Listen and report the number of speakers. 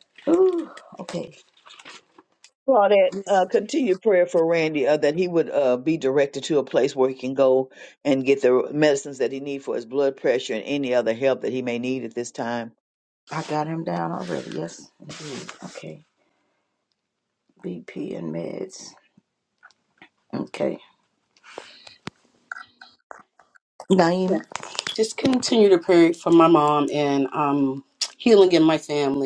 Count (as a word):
three